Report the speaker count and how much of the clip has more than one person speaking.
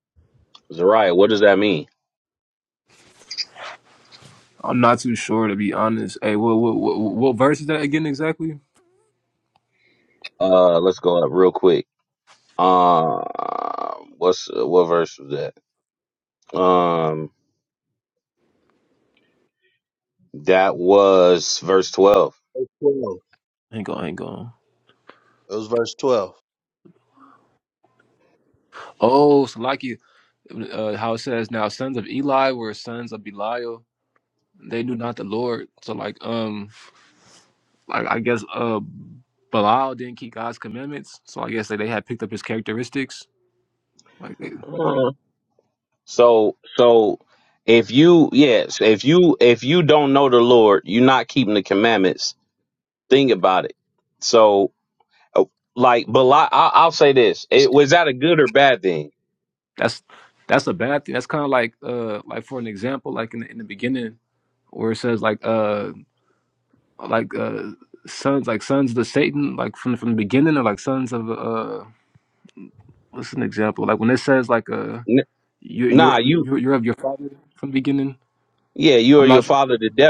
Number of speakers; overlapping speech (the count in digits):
3, about 1%